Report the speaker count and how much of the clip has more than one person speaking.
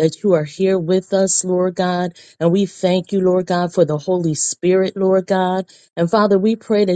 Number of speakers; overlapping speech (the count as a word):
one, no overlap